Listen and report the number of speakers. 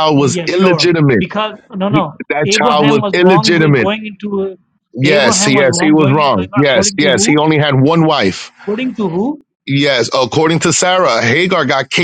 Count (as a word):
two